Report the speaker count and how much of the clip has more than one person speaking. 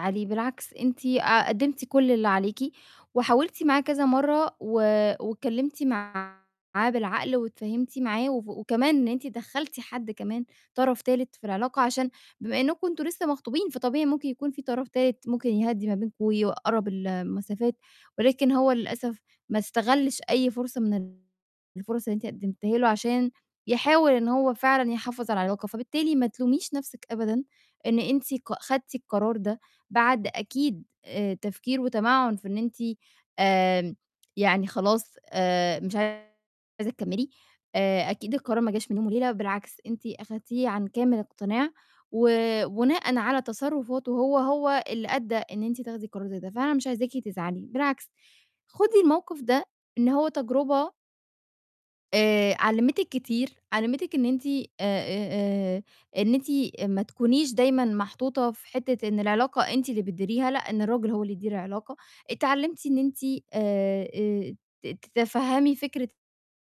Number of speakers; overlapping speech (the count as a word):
one, no overlap